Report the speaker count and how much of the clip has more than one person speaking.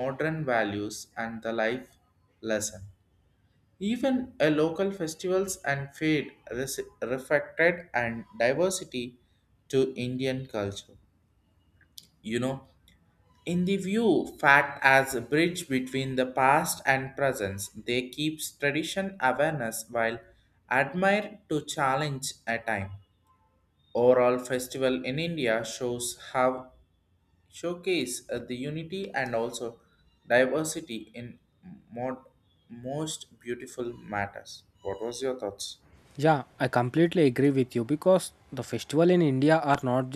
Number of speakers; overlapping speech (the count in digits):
2, no overlap